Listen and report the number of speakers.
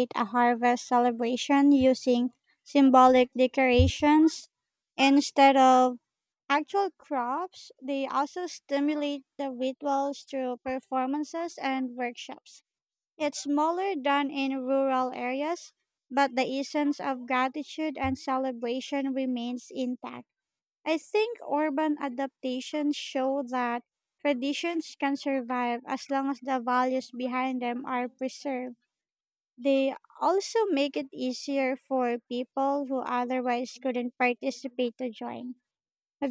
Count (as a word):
one